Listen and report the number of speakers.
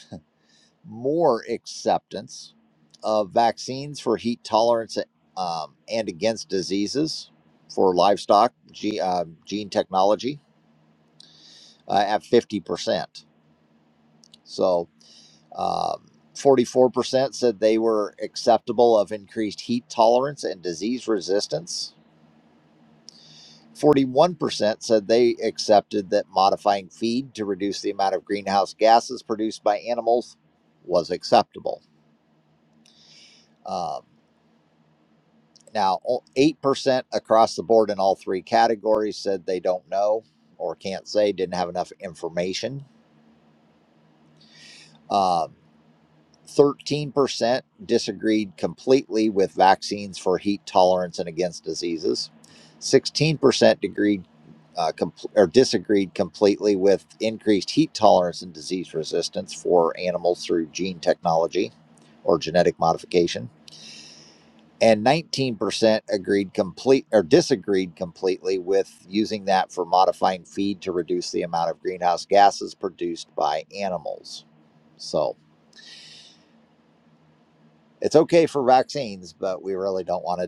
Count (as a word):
one